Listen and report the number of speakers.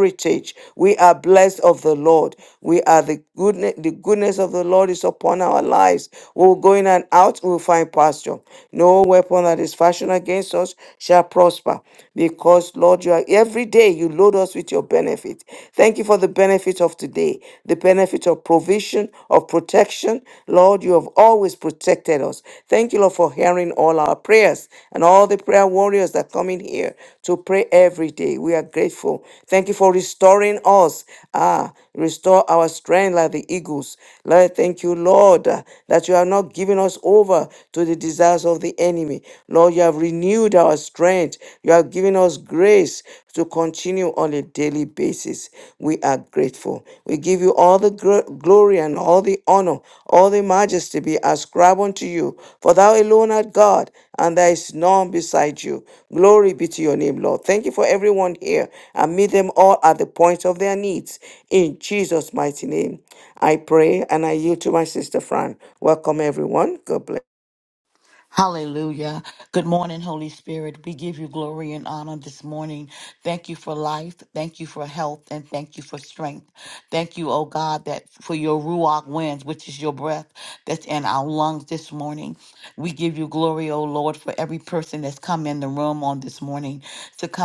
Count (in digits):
2